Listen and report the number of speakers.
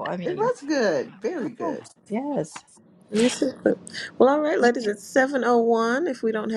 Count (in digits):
3